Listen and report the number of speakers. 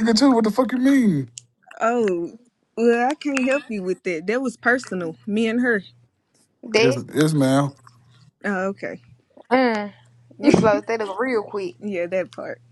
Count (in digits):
3